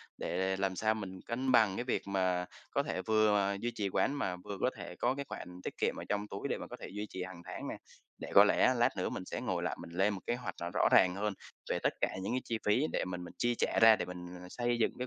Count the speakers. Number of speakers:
one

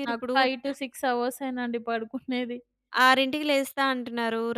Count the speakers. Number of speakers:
two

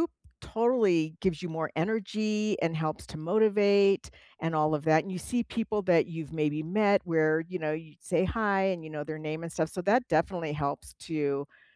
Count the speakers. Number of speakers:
one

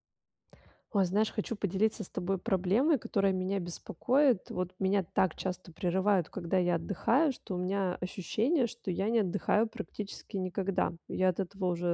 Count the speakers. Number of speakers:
one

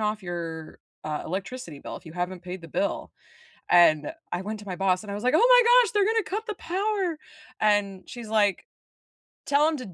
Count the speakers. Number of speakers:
one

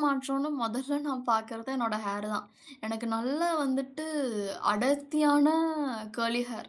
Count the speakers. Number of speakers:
one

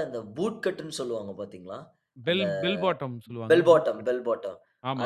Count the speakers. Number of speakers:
two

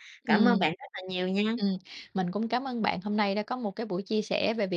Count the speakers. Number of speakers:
two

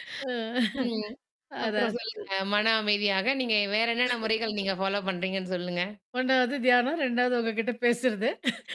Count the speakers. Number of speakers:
two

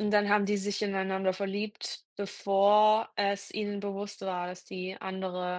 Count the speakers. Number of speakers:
one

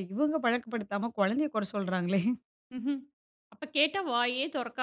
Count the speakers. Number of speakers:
two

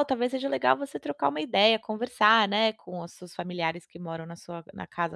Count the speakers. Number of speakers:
one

